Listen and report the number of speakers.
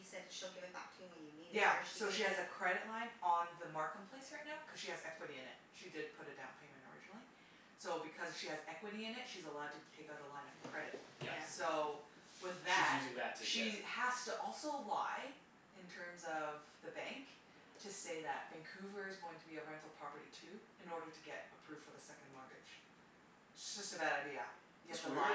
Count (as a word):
three